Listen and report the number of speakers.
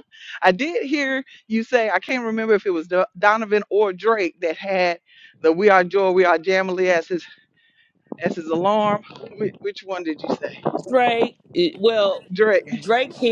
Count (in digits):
2